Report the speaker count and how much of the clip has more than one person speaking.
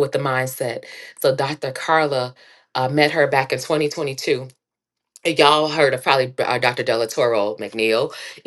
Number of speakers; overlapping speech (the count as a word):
one, no overlap